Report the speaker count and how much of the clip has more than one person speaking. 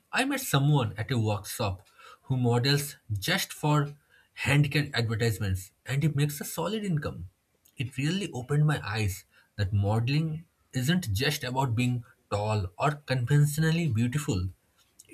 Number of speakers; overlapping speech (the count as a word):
one, no overlap